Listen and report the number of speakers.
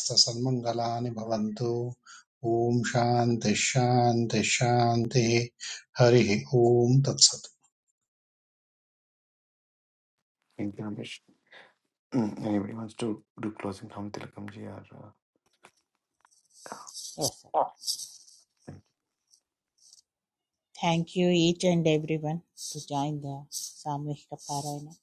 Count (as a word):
three